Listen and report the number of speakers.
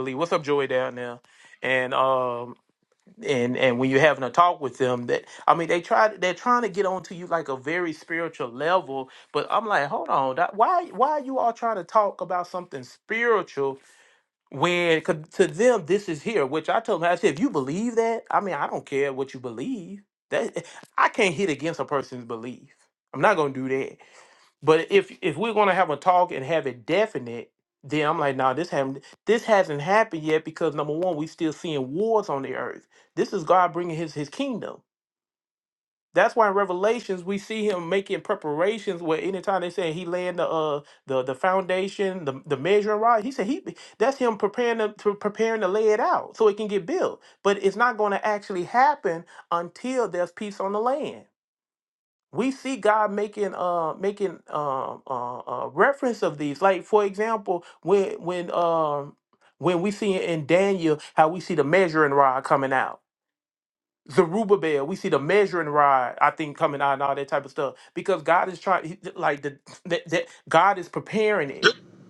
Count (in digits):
1